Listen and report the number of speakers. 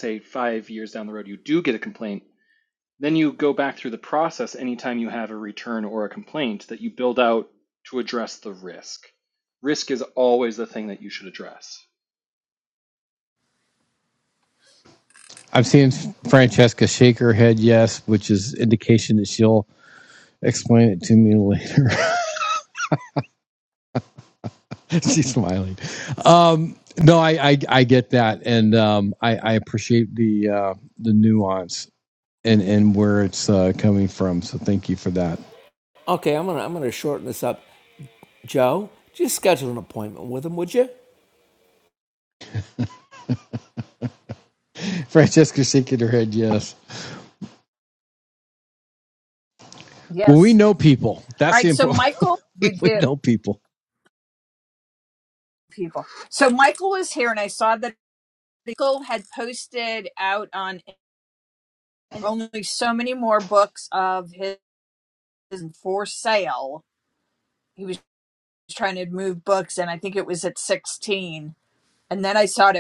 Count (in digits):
4